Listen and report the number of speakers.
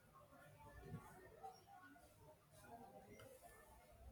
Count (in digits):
0